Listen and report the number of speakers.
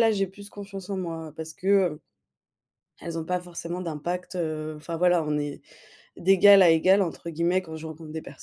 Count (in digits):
1